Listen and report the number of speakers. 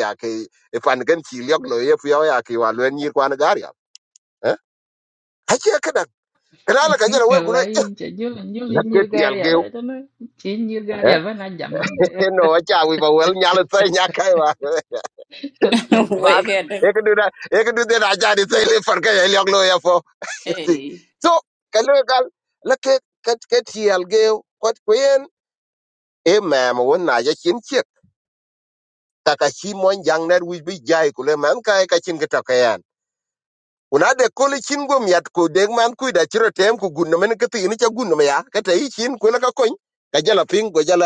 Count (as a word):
three